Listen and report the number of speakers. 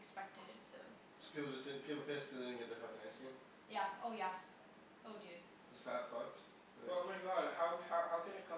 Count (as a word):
three